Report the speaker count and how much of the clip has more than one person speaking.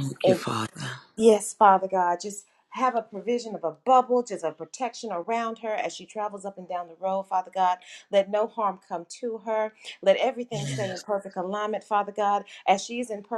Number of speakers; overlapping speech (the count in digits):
2, about 3%